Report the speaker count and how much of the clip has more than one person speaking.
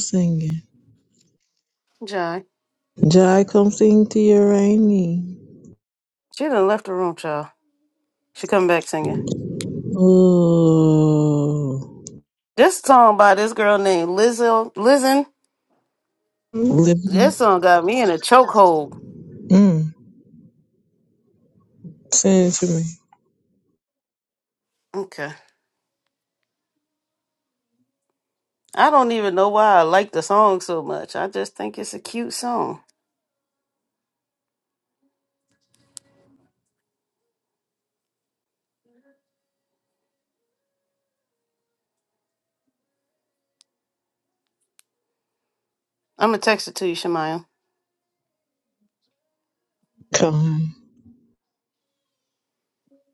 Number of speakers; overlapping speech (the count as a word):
two, under 1%